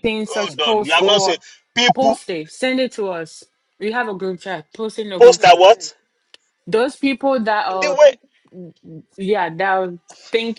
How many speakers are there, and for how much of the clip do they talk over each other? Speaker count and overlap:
two, about 21%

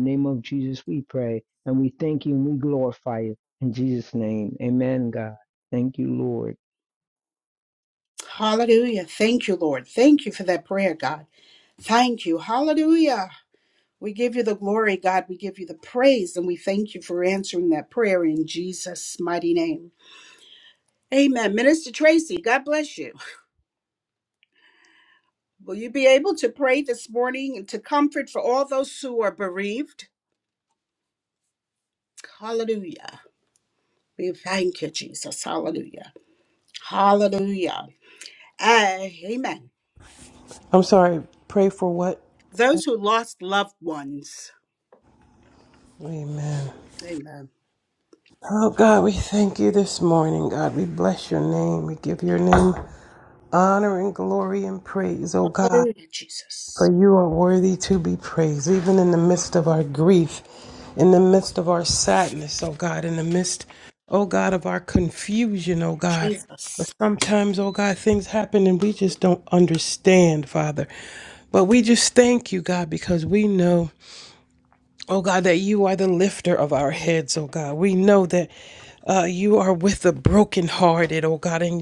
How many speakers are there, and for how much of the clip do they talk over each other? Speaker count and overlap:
three, about 1%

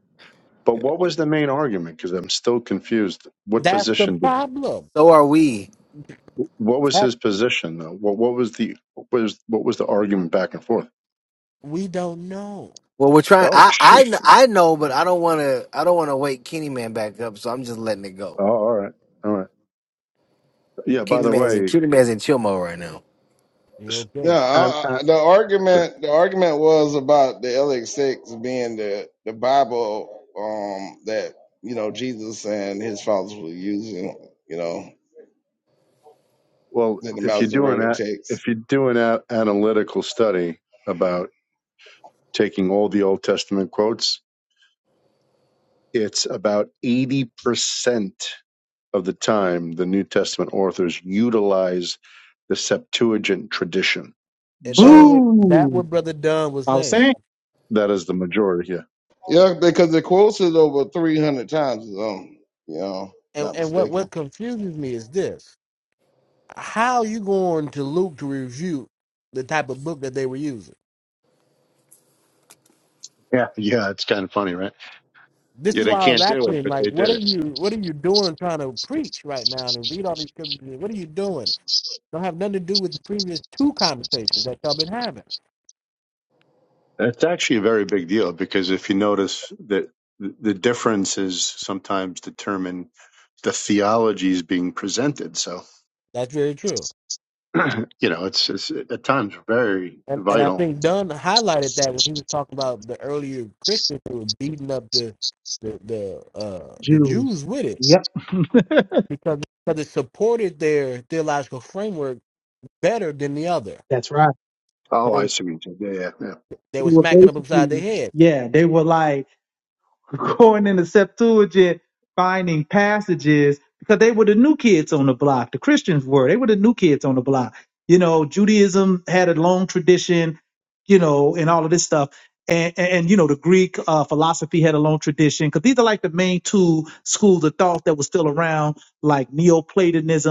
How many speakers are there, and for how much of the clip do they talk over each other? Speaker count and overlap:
five, about 7%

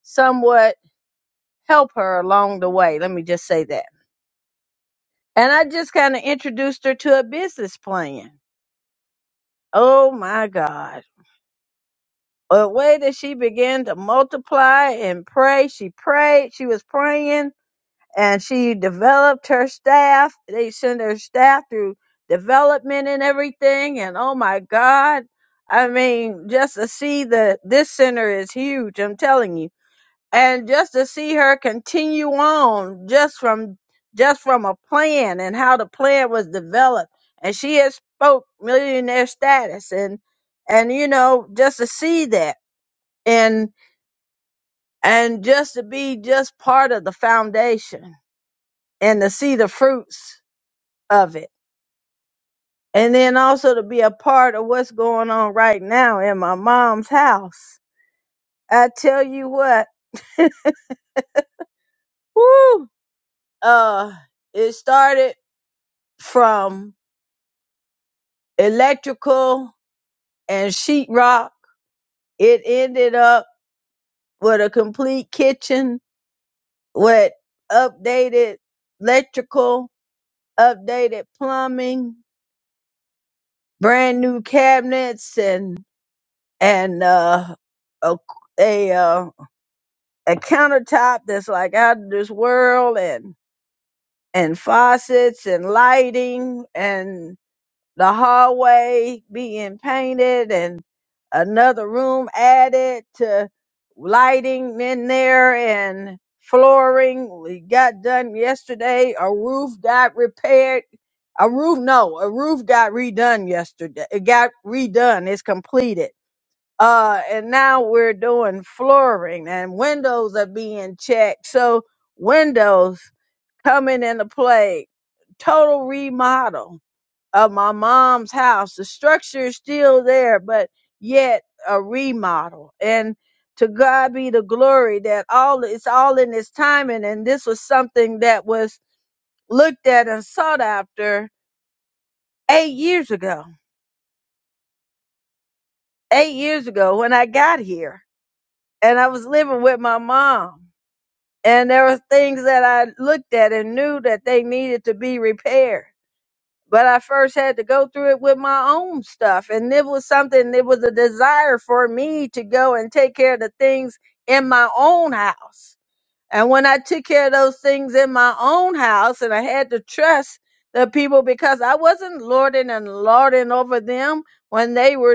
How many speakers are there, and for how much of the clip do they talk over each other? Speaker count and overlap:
one, no overlap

